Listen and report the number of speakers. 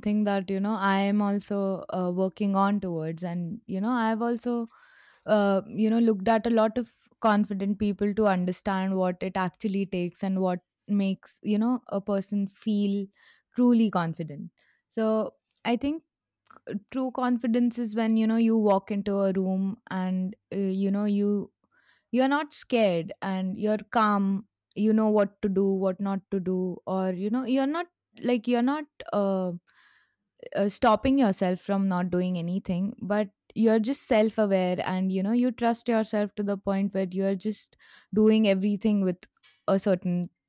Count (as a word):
one